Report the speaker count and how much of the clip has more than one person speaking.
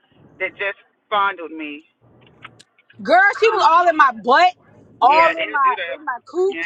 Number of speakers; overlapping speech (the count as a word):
two, about 23%